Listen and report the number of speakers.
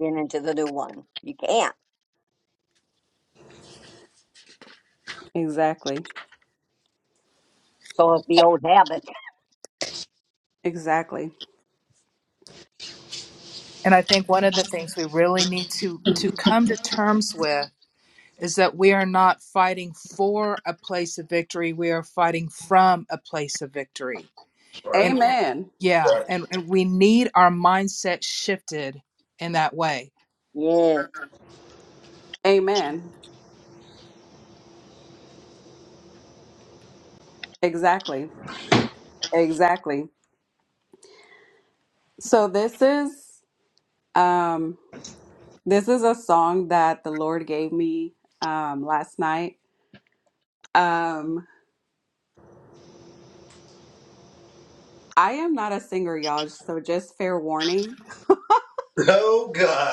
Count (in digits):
4